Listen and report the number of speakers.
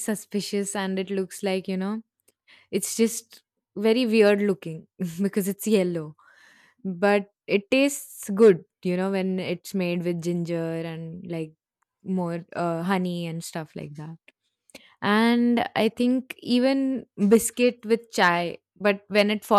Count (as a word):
one